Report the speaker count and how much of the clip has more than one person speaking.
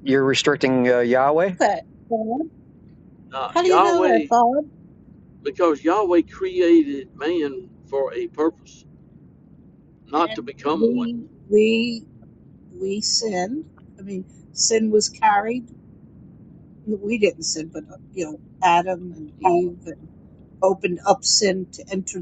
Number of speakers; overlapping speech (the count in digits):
3, about 6%